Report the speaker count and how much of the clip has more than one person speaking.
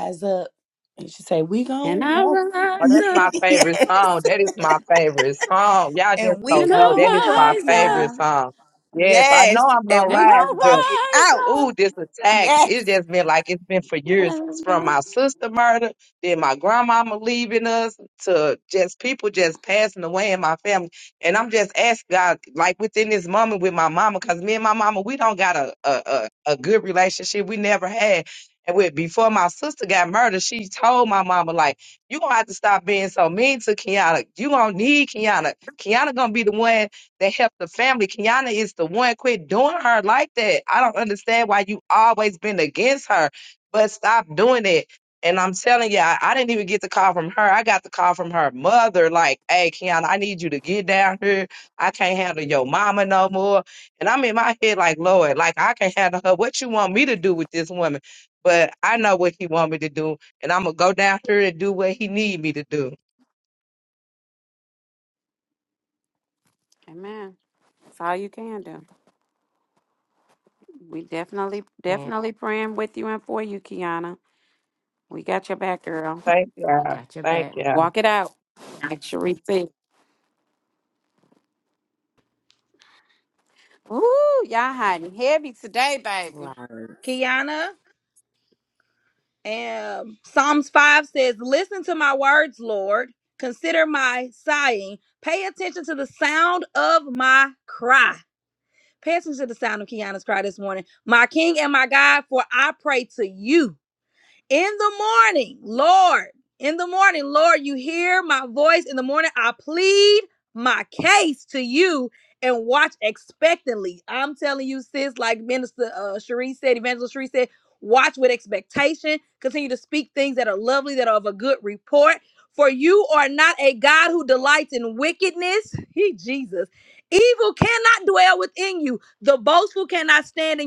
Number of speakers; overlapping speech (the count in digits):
5, about 6%